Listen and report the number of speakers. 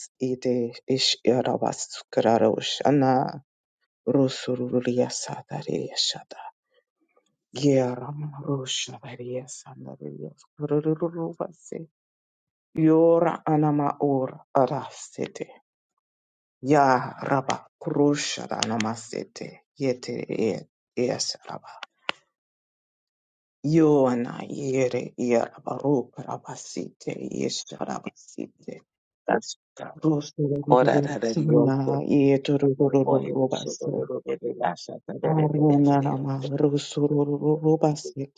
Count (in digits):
2